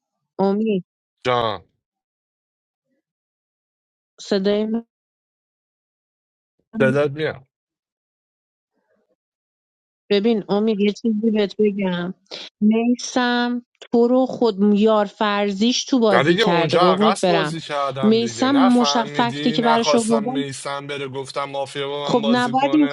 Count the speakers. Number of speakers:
two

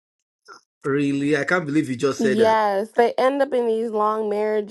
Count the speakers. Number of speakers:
two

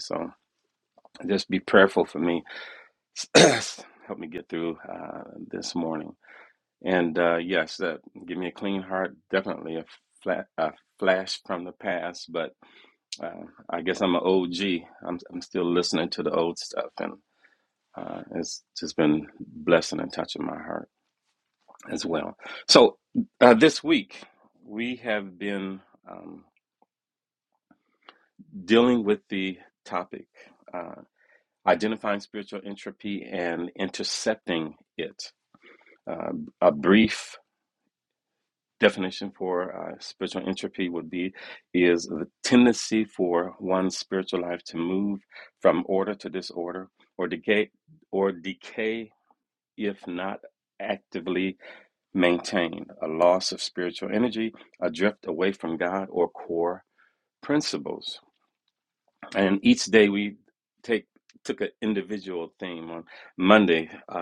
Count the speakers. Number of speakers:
one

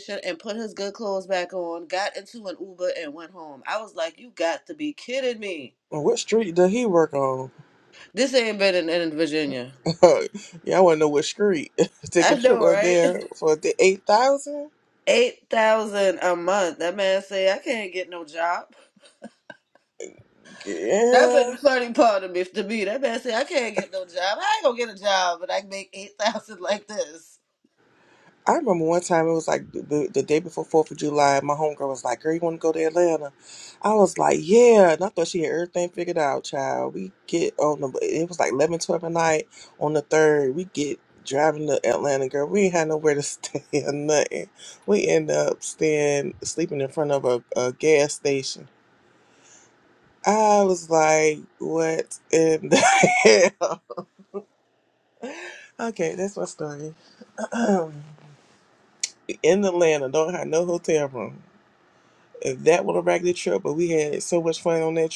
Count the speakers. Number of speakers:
two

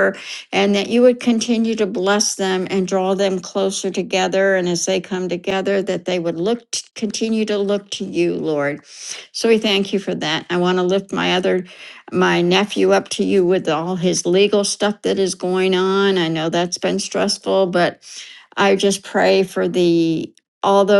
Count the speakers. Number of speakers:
one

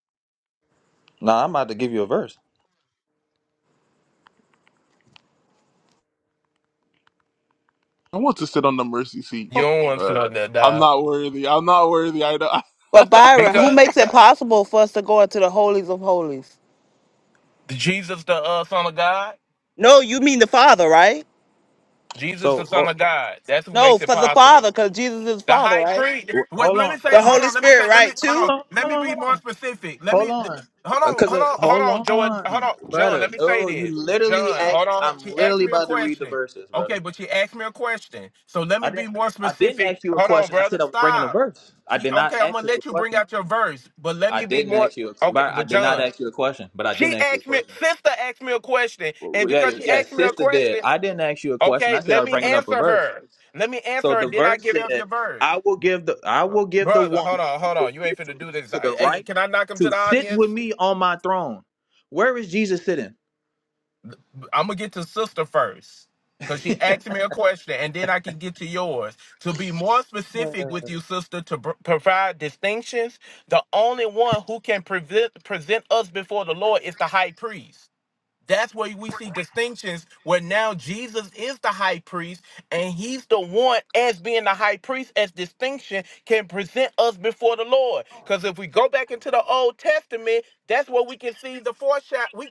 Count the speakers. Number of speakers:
four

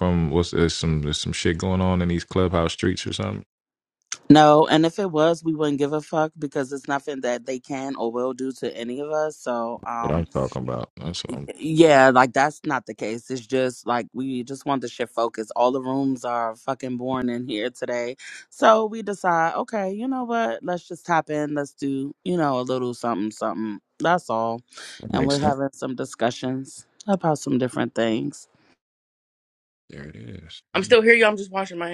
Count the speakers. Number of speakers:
three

